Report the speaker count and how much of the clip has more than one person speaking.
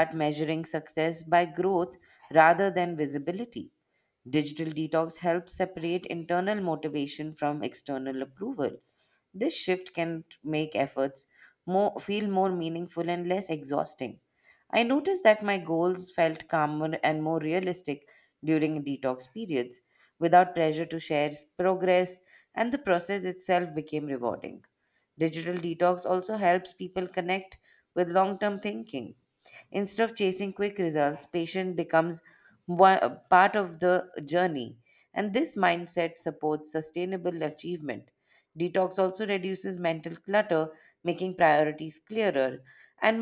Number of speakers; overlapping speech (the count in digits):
1, no overlap